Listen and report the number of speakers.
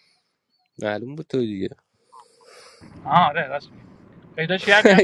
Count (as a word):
two